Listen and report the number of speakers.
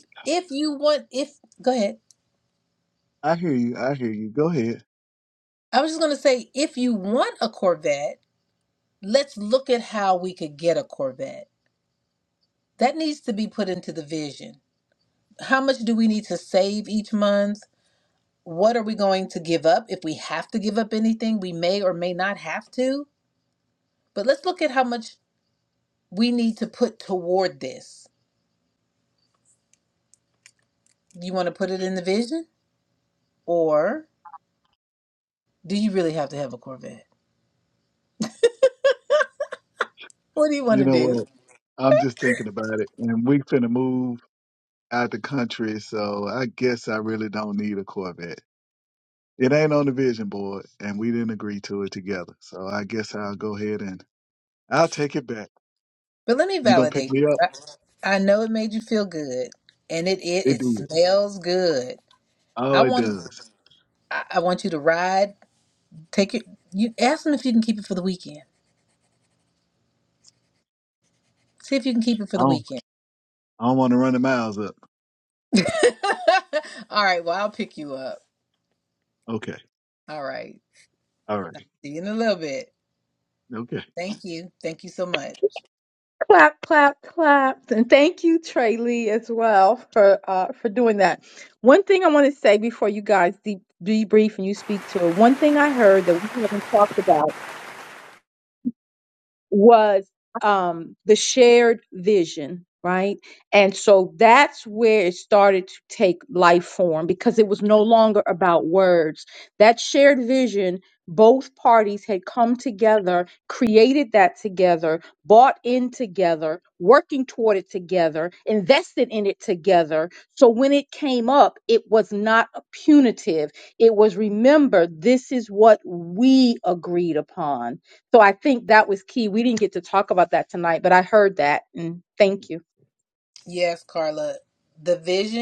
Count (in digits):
3